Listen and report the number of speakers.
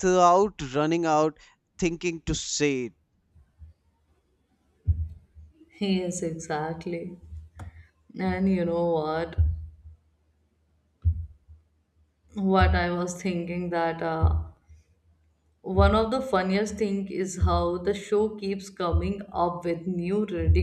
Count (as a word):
two